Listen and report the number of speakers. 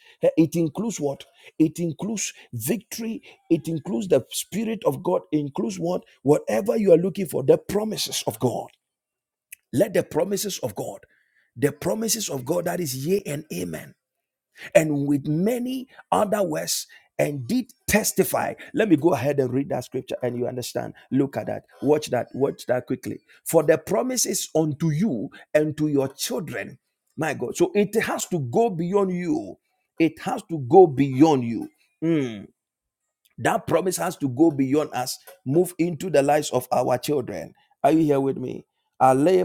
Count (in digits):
1